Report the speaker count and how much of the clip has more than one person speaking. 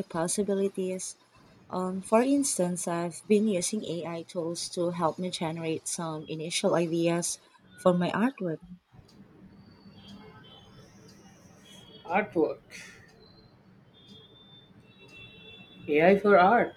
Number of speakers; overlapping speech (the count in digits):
2, no overlap